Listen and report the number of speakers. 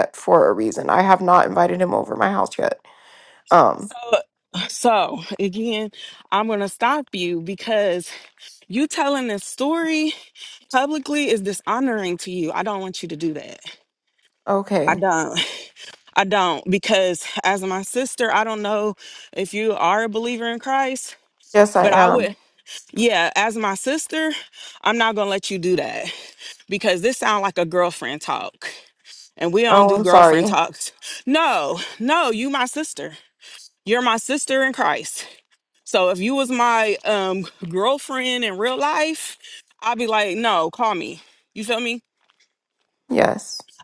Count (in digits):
2